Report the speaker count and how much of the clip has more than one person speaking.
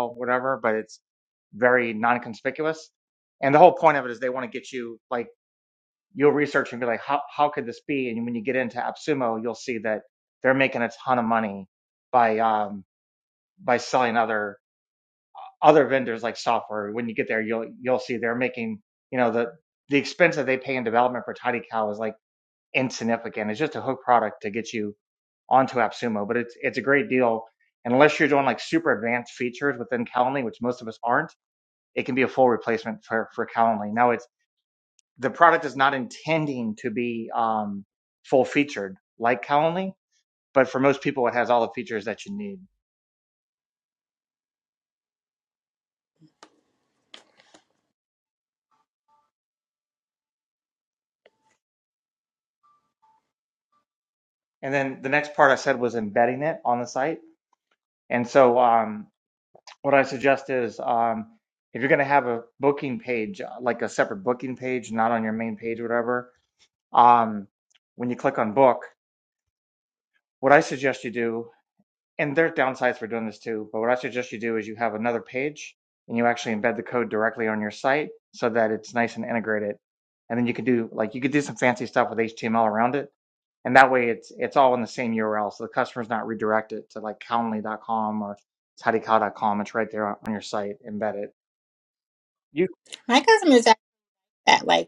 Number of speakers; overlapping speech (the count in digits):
2, no overlap